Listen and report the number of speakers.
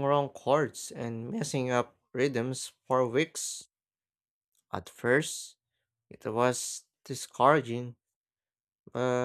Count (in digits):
1